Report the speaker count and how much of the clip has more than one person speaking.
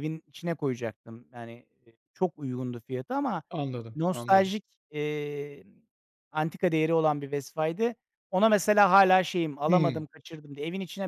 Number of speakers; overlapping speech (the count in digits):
2, about 7%